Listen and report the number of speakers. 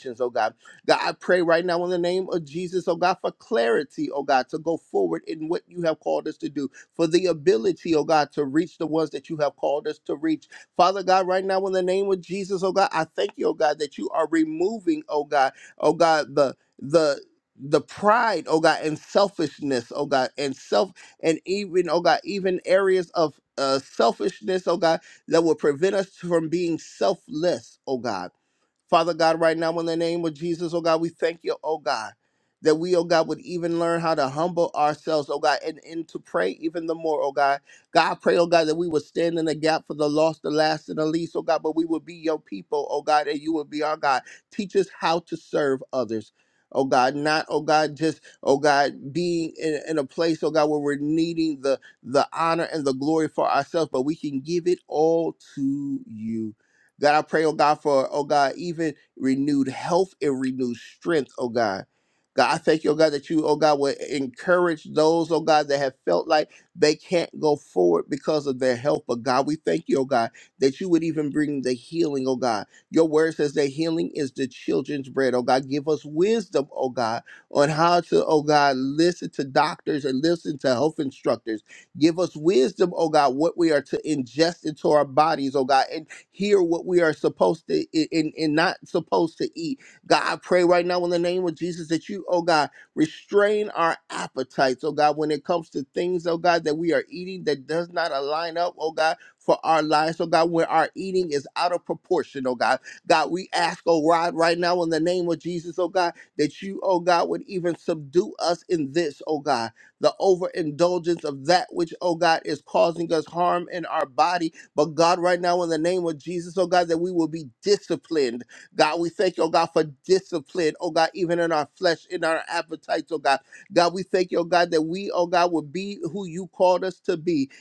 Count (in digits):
1